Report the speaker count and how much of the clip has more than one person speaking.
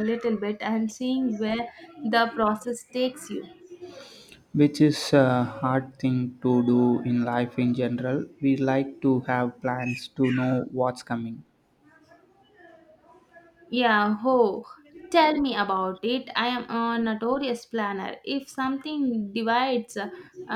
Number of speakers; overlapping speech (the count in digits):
2, no overlap